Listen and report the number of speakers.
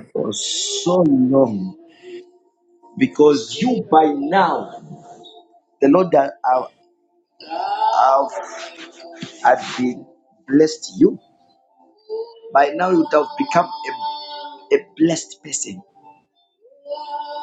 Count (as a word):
one